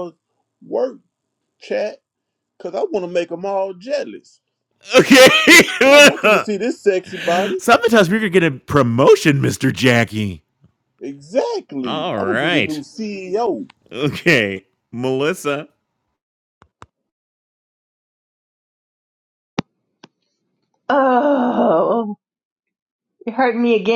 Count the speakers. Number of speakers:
3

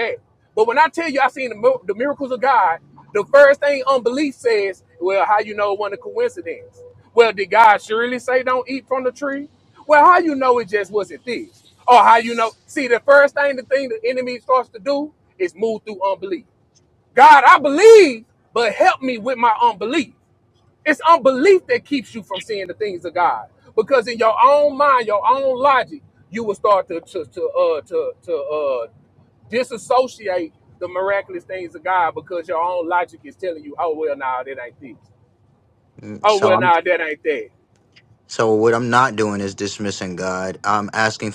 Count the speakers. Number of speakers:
2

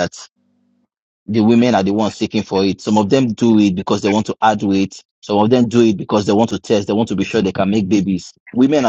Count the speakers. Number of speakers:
1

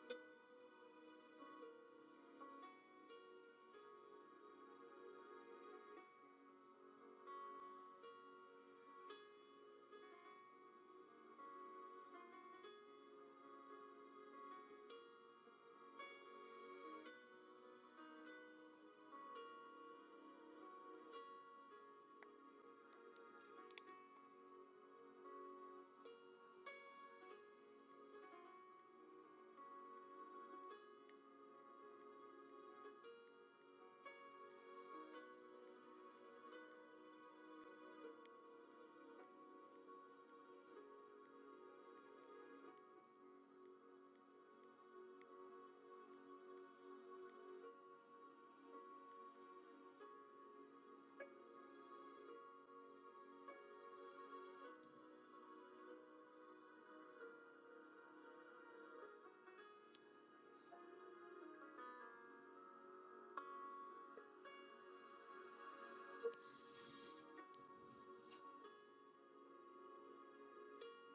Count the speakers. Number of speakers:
0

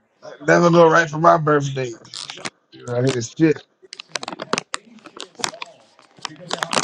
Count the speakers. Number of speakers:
1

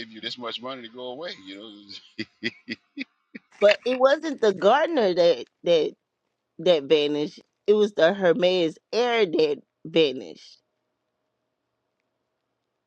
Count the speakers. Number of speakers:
2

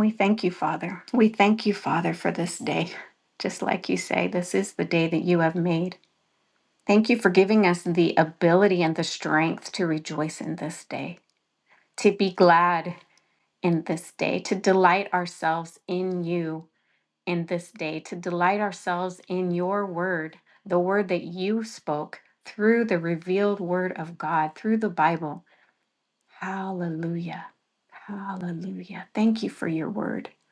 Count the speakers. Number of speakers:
1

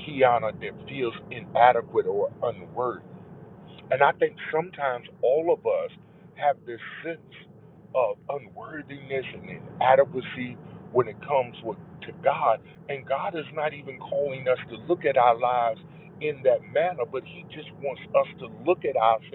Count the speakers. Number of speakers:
1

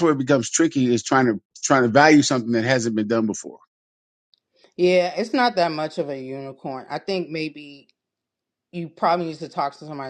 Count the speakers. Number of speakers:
2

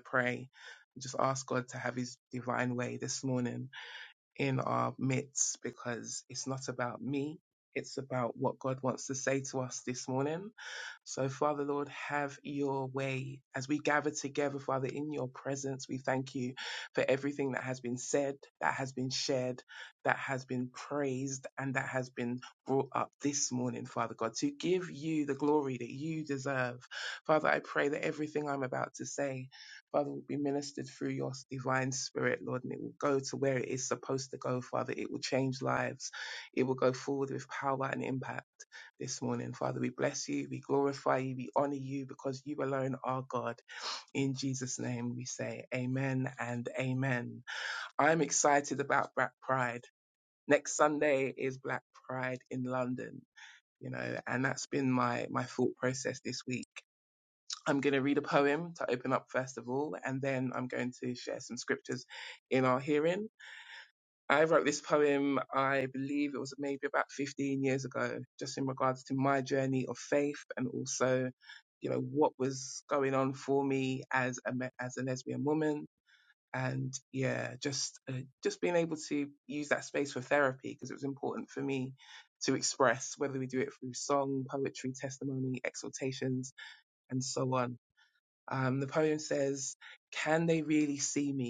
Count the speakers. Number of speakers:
1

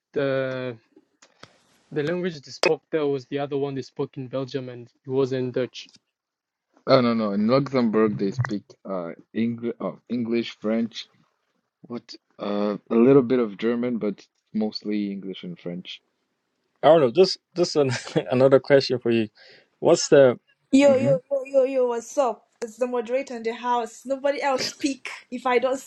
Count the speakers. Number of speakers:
4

